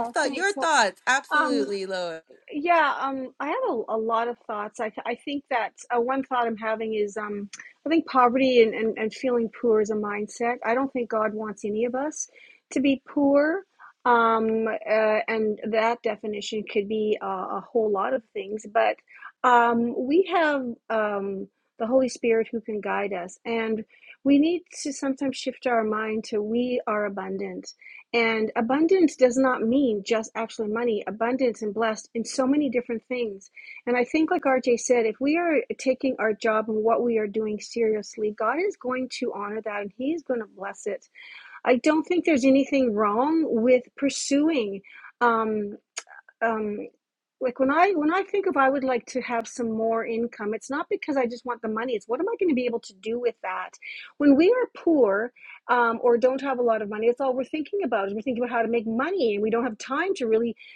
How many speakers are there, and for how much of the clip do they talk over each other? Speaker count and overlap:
2, about 2%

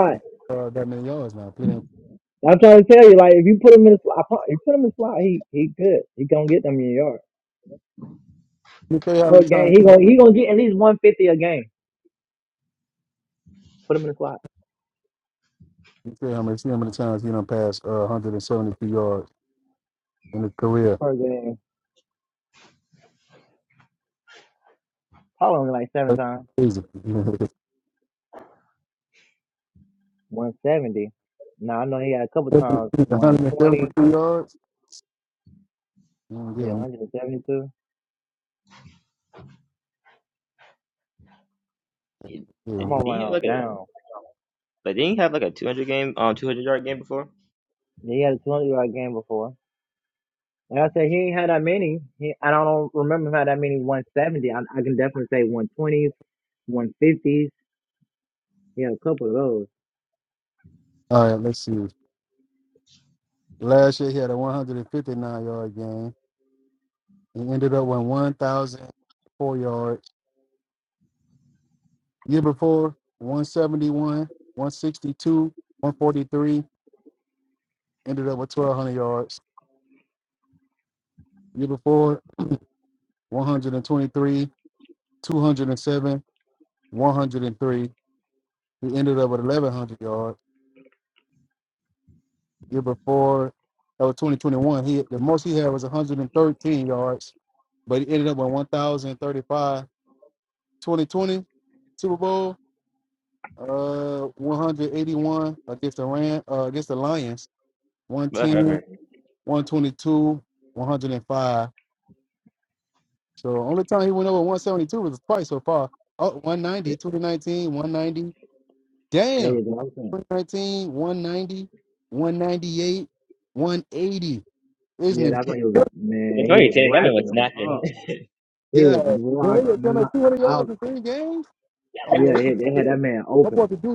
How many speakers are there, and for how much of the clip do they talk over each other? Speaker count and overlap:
3, about 6%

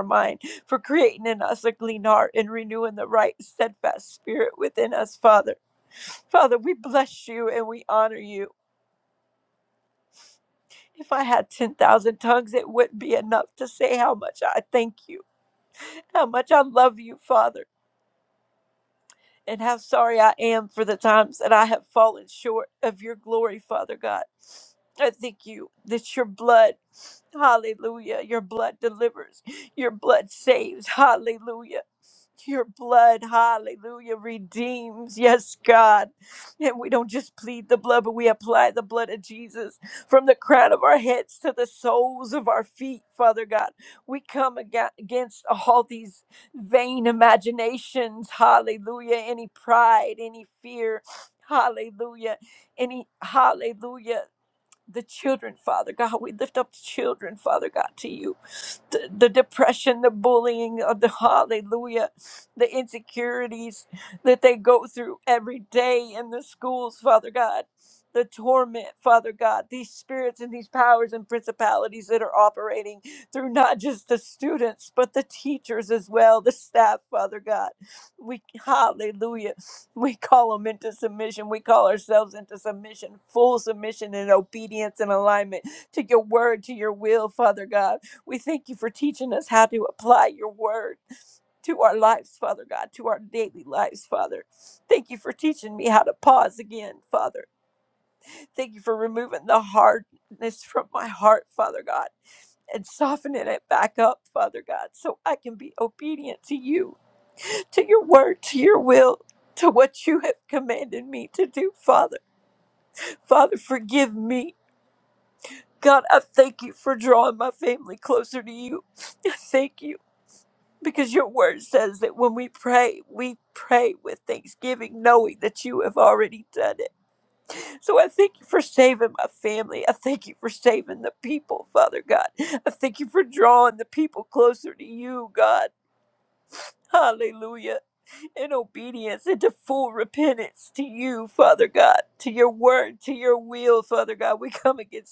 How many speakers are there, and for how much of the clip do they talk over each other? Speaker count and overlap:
1, no overlap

